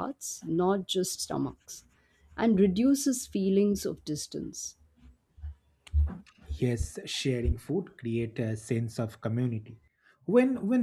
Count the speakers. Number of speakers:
2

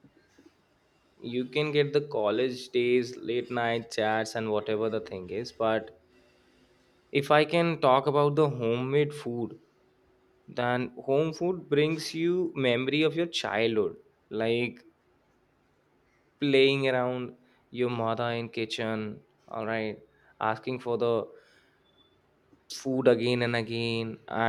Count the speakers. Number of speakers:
1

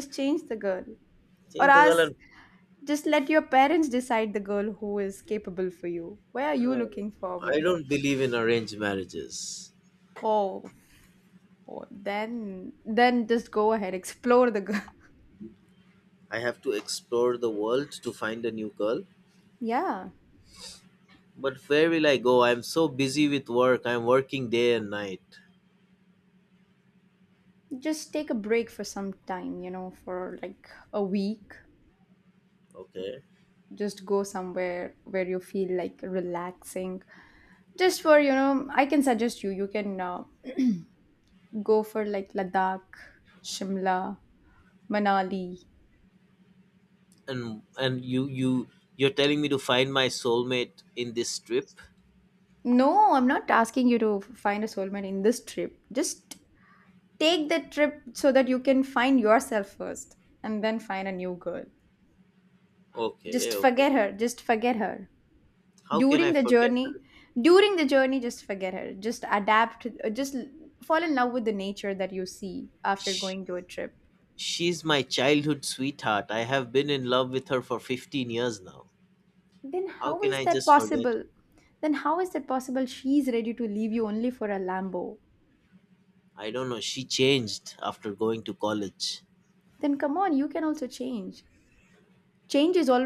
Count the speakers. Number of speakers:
2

